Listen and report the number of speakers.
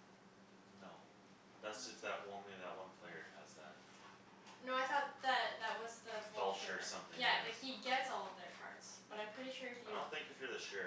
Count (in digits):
2